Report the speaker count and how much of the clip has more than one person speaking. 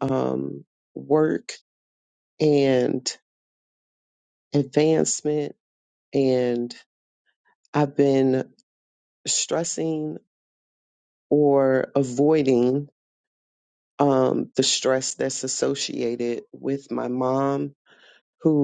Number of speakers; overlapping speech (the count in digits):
1, no overlap